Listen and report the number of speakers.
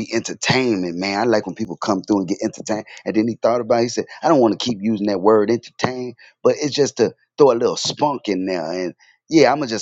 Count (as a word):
one